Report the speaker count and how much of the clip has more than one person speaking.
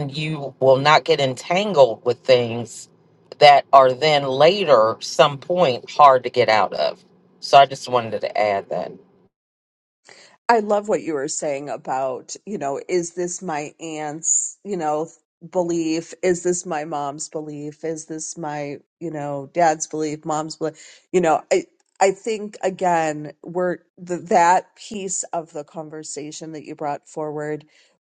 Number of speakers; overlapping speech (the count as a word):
two, no overlap